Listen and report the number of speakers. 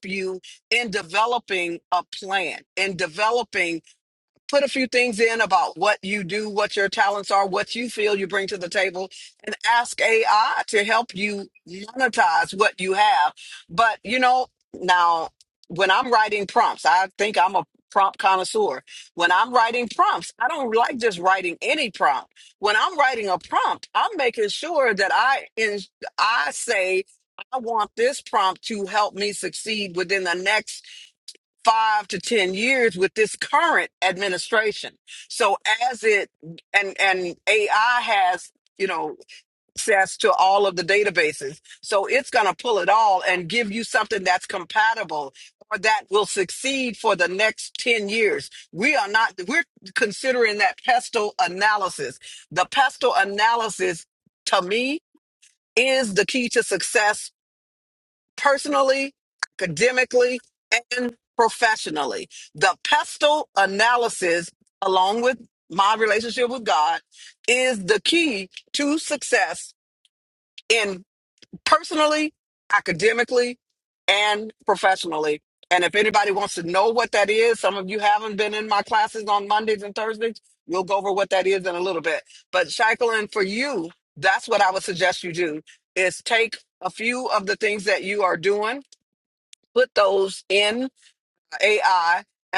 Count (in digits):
1